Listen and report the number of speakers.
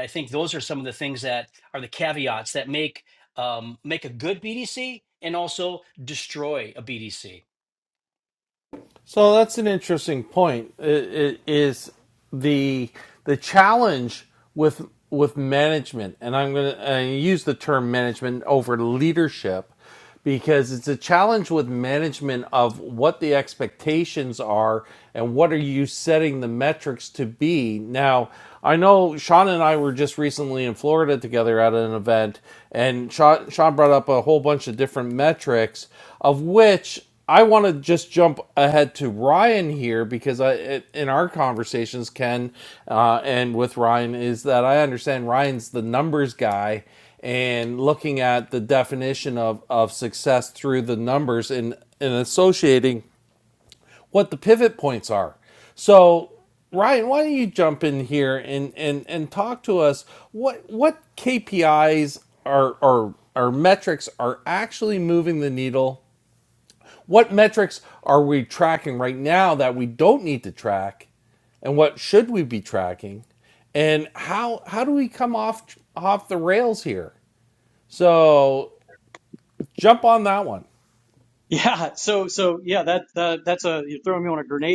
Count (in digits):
3